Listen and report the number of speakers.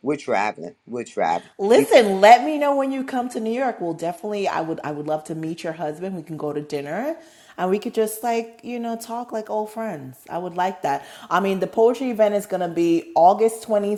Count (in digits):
2